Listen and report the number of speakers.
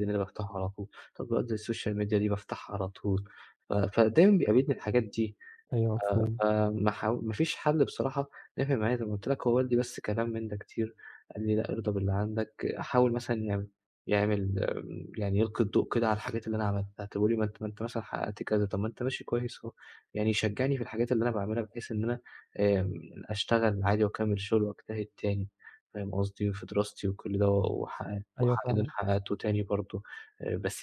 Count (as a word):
two